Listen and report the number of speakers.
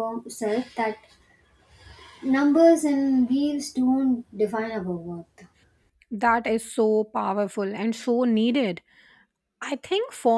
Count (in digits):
2